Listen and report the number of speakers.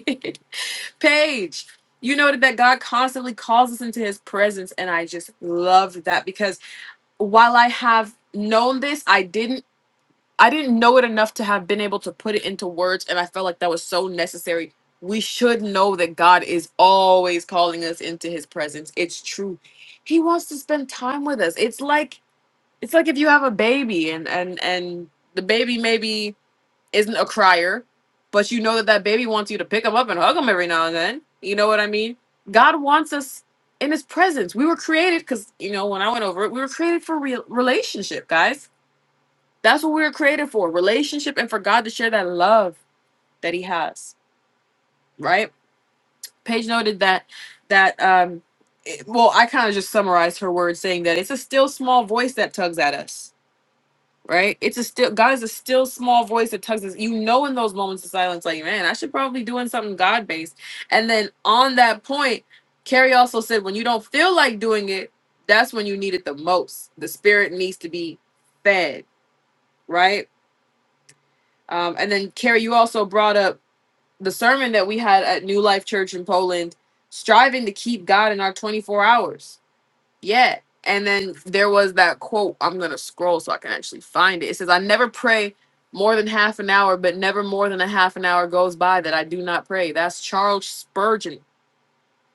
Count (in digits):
1